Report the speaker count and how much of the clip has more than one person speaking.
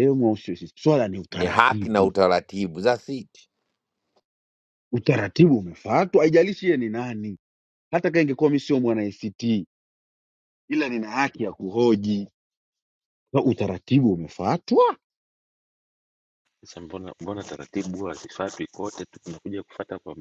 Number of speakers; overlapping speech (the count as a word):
three, about 4%